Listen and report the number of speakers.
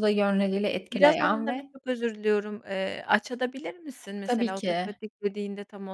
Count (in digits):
2